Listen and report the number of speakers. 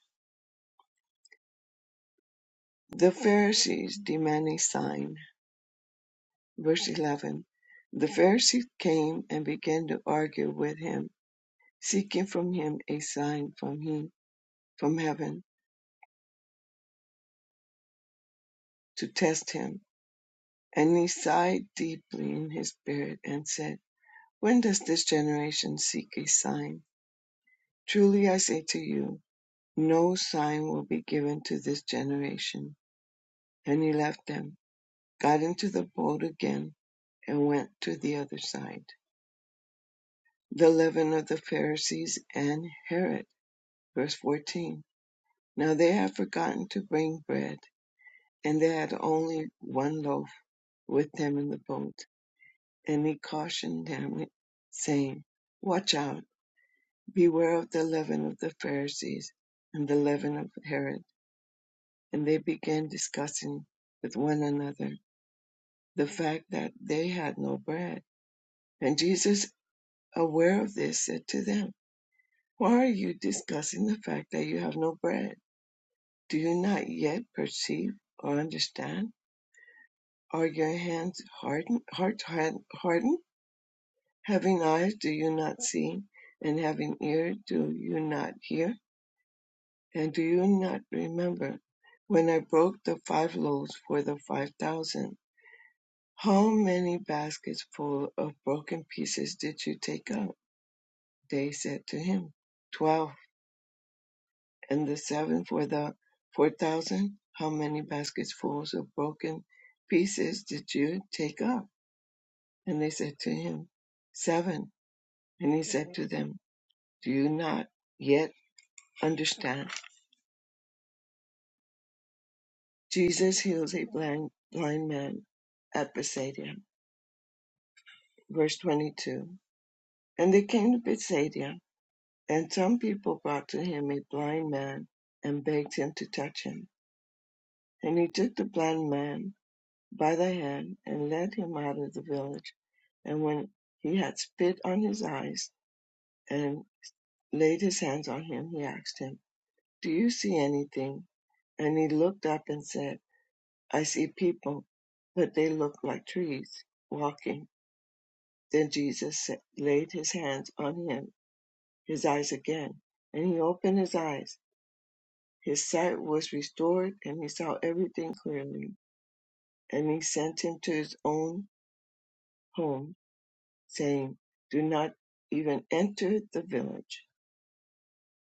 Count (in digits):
1